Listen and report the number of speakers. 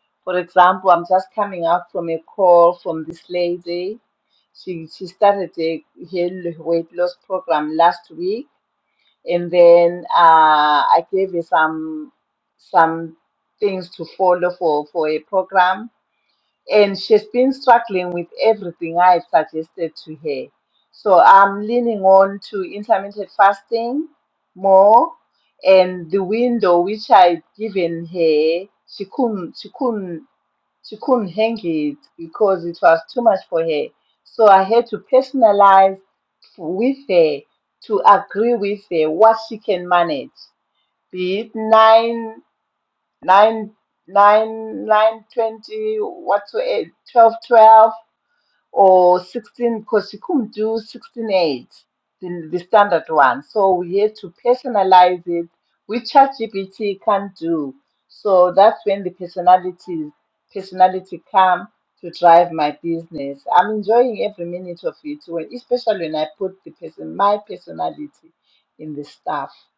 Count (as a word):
one